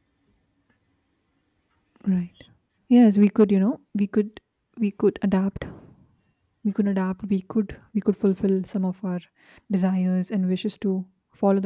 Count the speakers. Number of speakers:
one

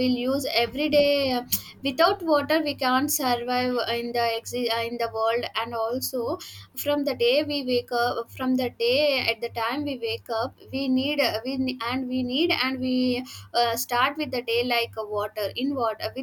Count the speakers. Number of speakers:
one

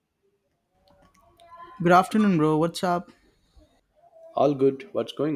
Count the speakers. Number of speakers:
two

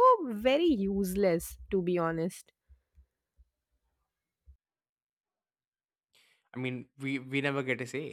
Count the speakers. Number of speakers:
two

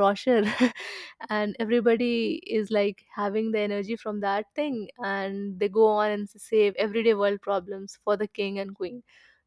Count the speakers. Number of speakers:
one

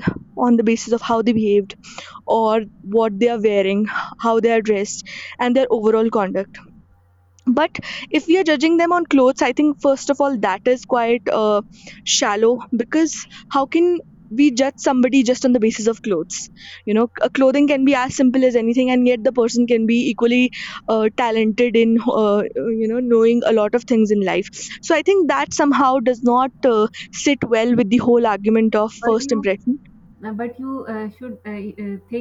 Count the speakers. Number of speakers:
two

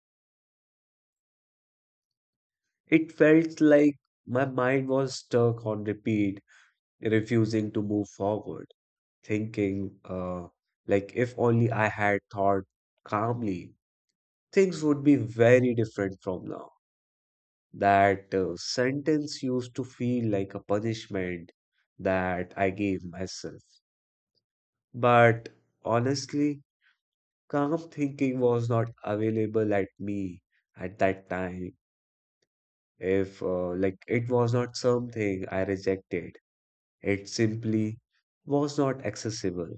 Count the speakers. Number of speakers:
one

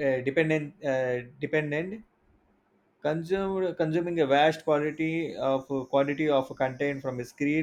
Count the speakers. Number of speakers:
one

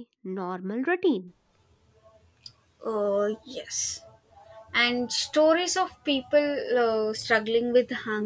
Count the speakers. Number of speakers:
two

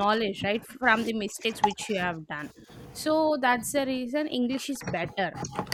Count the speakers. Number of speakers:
one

